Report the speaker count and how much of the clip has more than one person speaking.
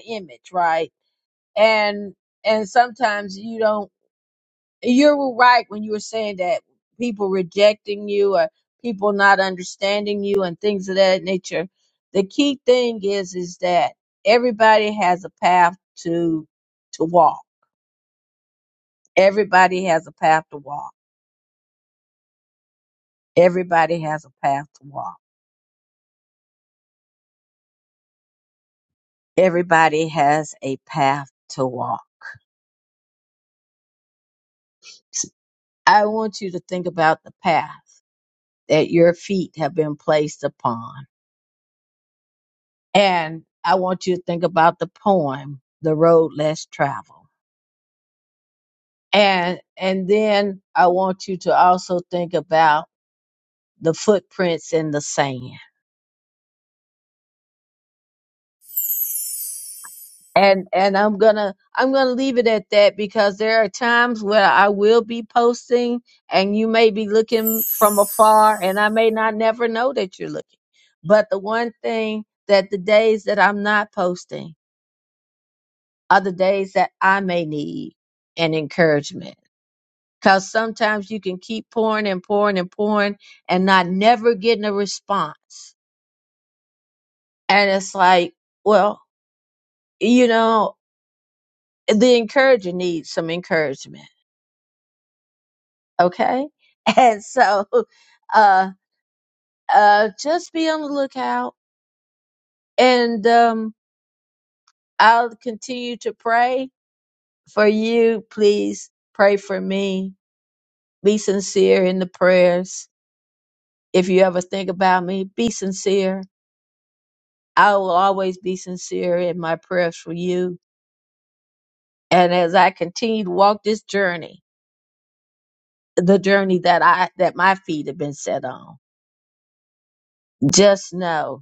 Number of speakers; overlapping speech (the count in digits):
1, no overlap